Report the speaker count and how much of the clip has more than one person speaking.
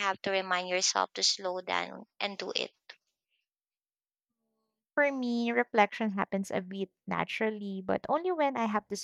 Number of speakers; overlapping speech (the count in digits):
2, no overlap